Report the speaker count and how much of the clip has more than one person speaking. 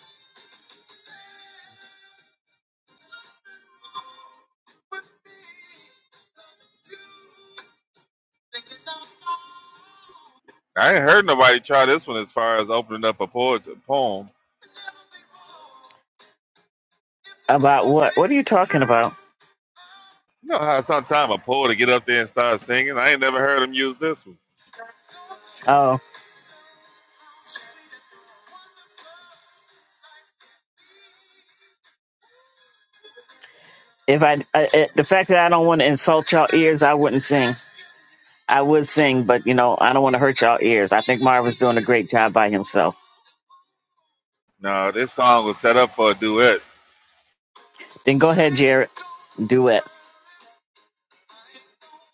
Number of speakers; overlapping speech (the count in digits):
2, no overlap